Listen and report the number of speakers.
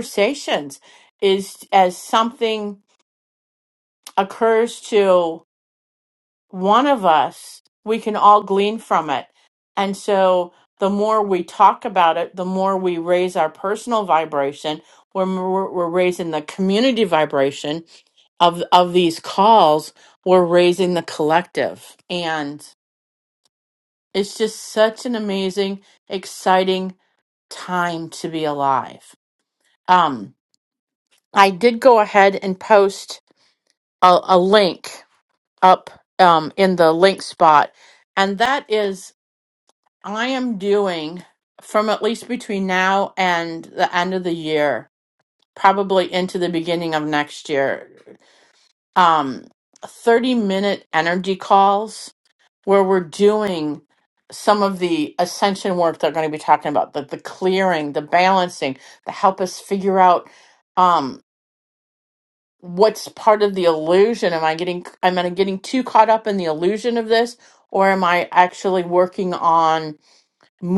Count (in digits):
1